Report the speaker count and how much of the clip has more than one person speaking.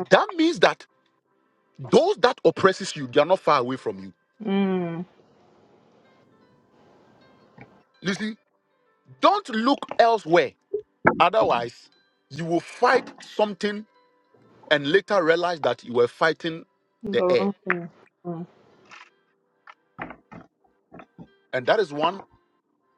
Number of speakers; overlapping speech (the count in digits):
2, about 2%